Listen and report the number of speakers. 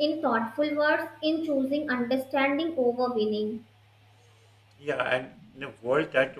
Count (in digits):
2